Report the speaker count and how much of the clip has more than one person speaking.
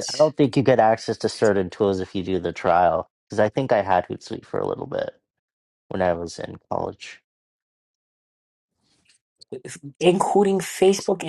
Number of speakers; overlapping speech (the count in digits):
2, no overlap